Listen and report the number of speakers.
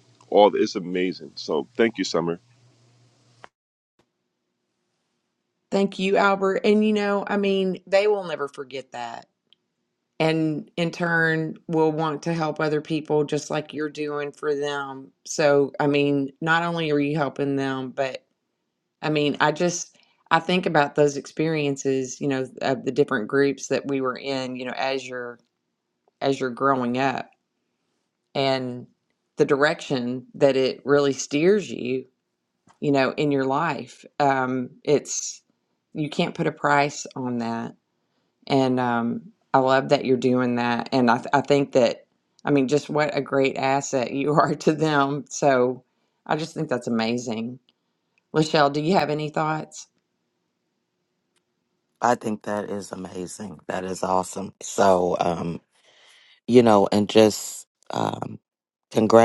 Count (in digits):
3